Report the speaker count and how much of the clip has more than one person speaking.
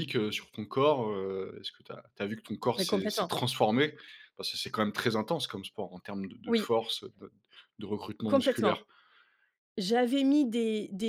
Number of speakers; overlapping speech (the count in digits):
2, about 11%